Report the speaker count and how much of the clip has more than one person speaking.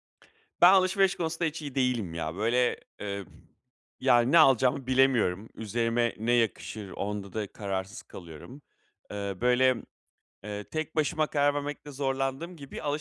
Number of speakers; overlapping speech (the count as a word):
one, no overlap